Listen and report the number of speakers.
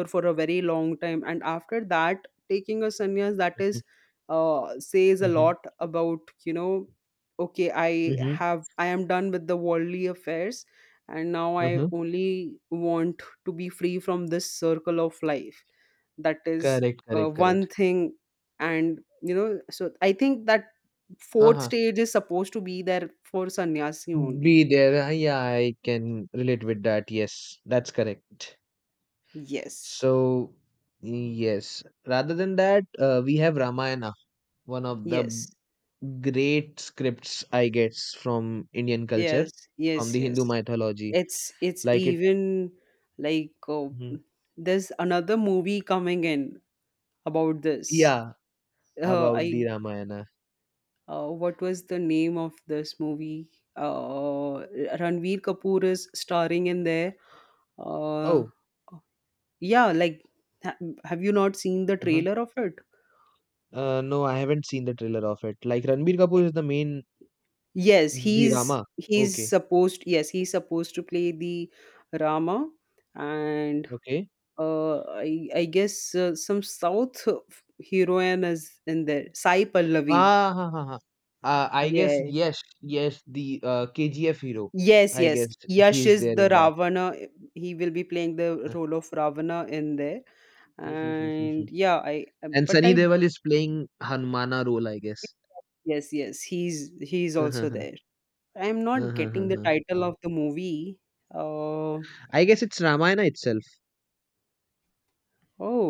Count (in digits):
2